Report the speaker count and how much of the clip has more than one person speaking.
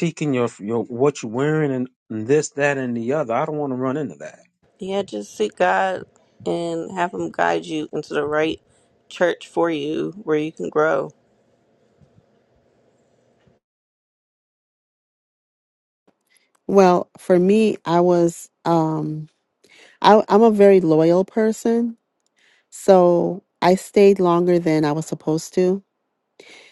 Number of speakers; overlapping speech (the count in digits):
3, no overlap